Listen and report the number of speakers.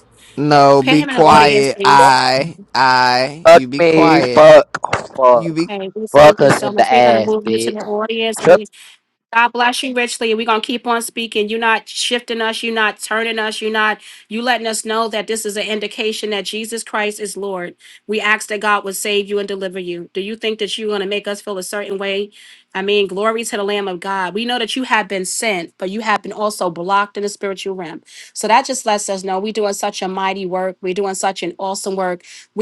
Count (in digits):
3